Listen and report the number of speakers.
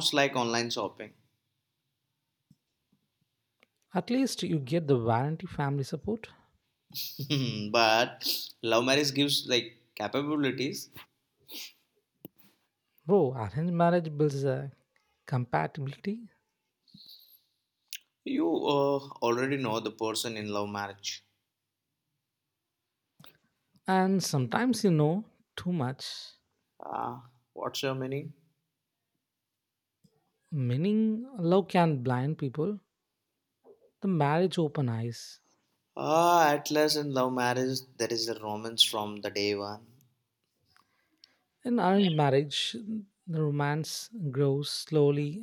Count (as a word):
two